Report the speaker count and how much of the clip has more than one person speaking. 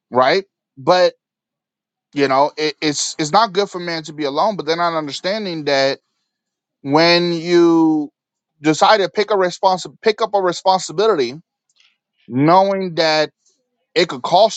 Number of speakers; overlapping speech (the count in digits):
1, no overlap